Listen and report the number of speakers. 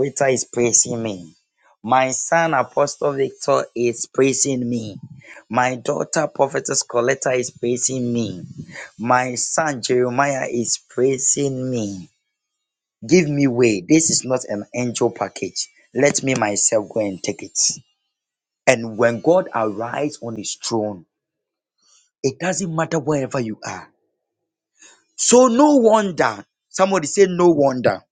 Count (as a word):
one